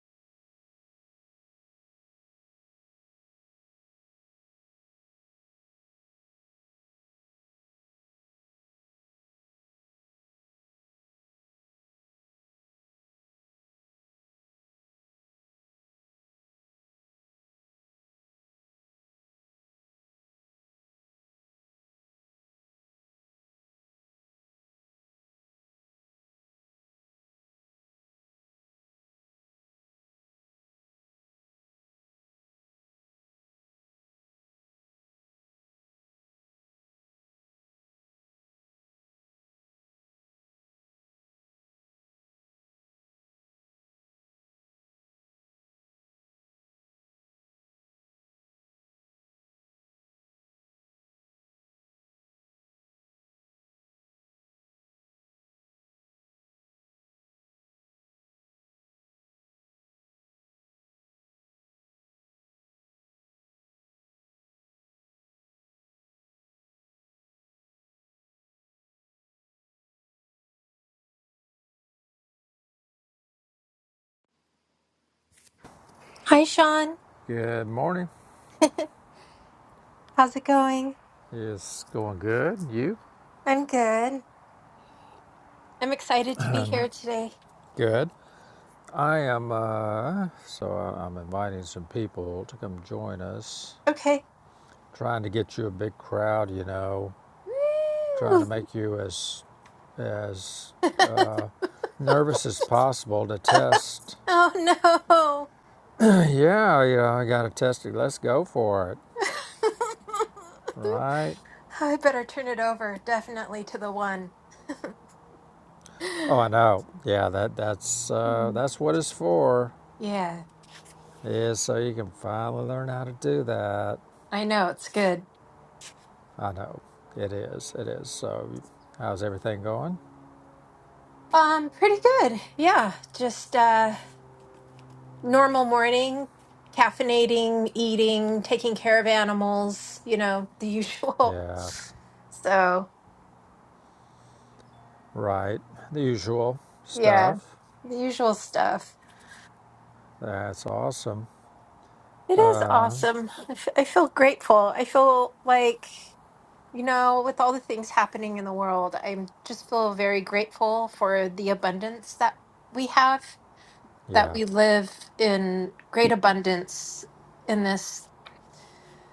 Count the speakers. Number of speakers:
2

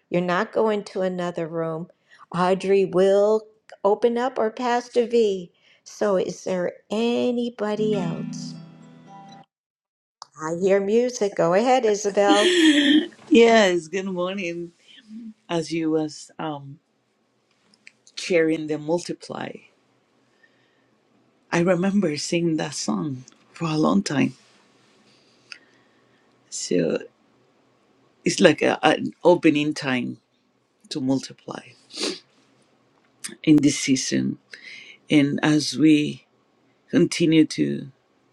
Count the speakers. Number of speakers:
2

